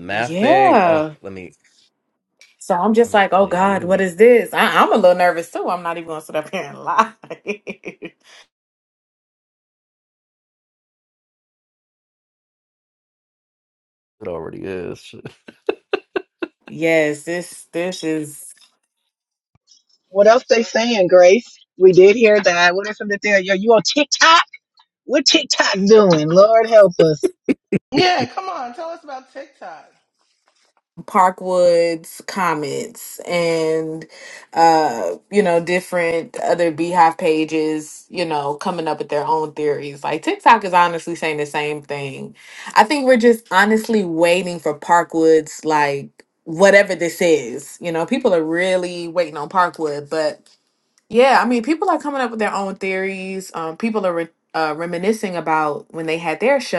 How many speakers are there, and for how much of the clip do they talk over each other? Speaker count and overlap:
4, about 4%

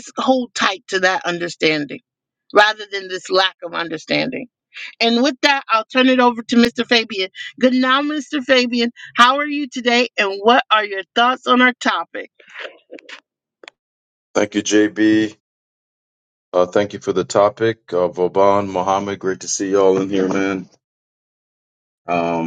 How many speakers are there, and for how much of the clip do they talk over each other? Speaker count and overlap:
2, no overlap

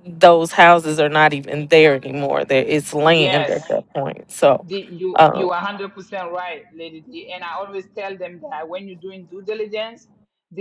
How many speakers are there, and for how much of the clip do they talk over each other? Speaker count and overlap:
2, about 10%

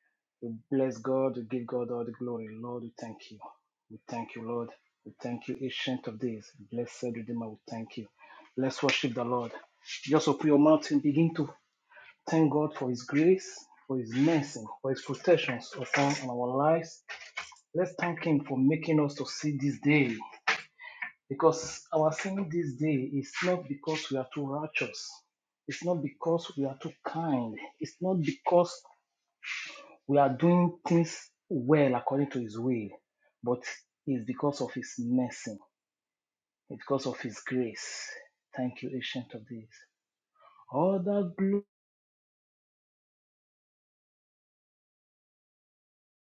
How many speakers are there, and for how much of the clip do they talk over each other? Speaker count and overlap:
1, no overlap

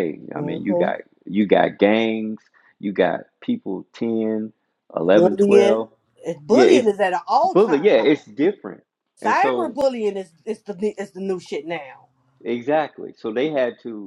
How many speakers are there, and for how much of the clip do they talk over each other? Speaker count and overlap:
2, about 19%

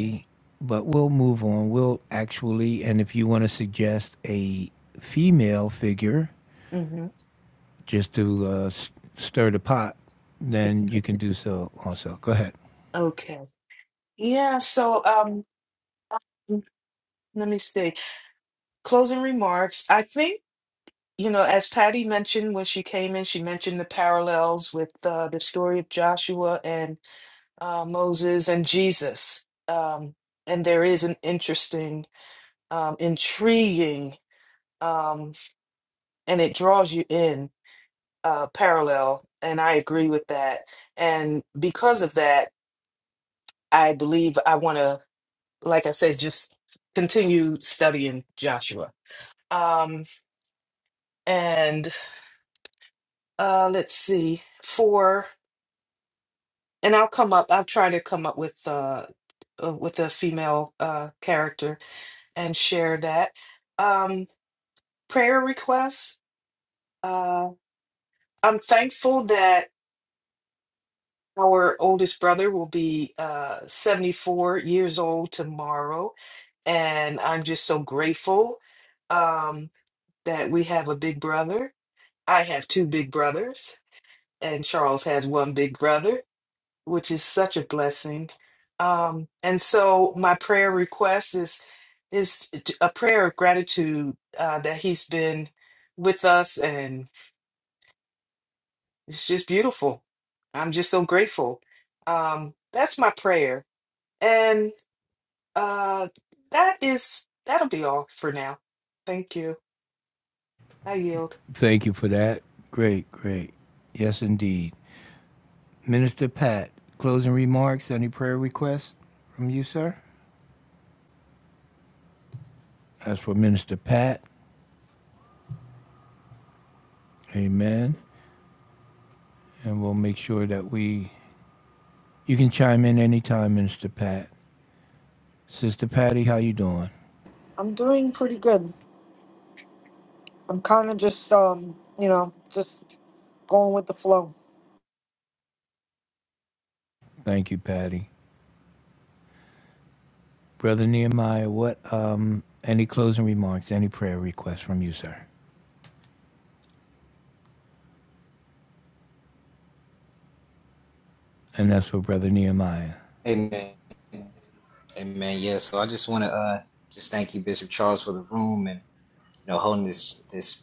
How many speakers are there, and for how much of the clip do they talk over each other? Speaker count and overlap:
4, under 1%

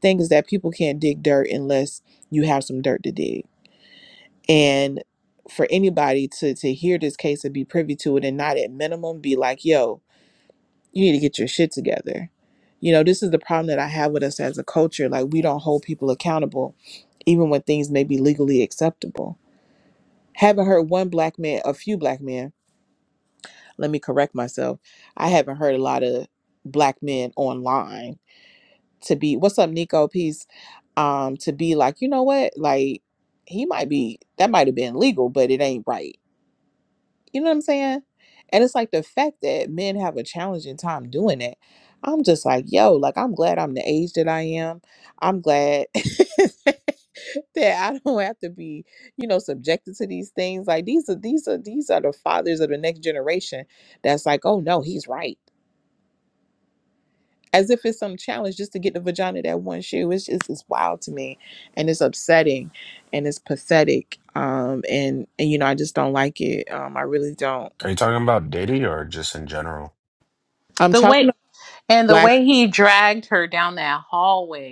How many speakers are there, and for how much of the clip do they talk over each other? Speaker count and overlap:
3, about 1%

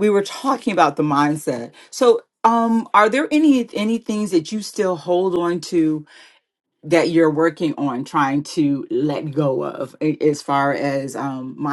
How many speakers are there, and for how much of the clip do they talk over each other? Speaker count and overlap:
1, no overlap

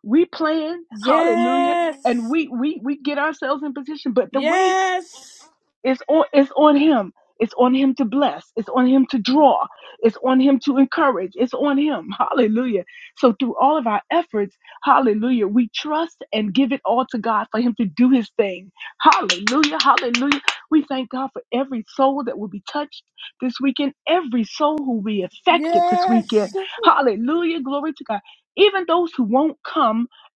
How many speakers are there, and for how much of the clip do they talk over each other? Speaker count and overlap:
2, about 9%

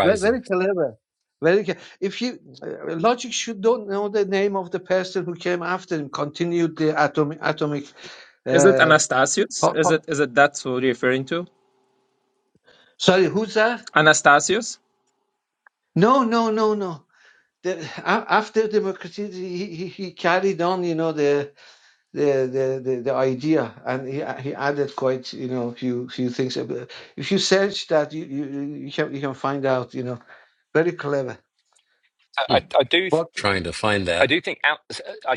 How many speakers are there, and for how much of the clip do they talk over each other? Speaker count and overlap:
4, about 4%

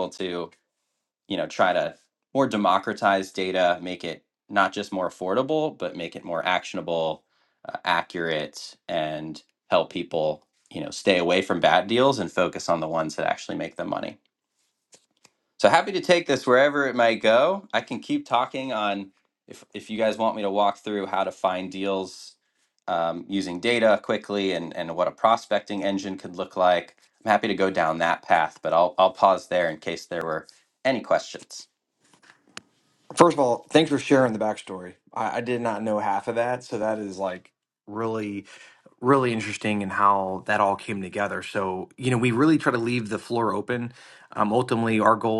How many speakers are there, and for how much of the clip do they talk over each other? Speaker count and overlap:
2, no overlap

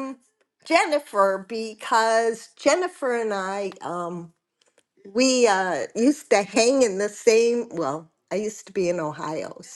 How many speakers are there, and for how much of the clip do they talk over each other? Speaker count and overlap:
1, no overlap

